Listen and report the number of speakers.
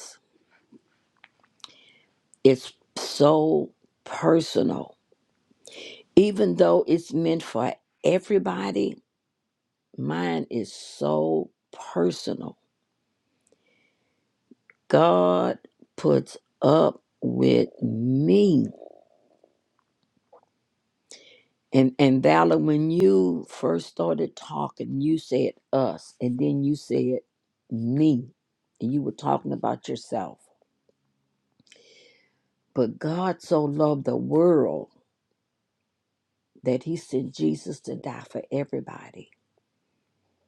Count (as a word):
one